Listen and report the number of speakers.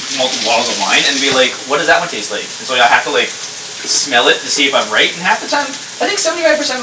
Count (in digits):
1